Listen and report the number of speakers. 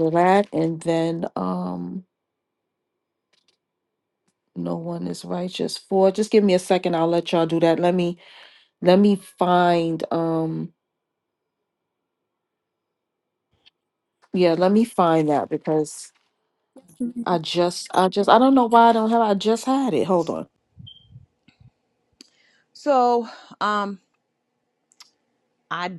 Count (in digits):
2